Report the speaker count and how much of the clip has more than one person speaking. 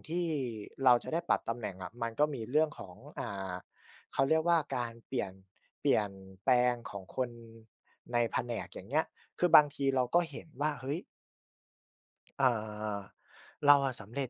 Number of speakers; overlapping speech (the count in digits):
1, no overlap